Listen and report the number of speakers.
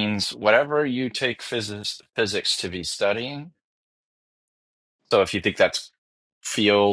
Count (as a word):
one